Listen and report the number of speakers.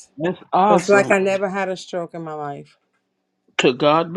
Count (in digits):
2